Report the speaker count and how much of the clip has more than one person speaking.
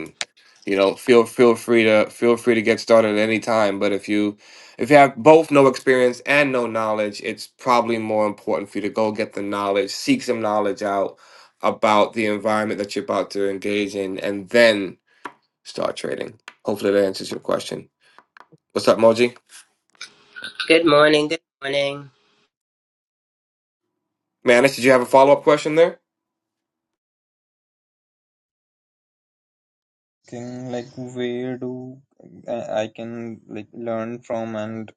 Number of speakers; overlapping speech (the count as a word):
three, no overlap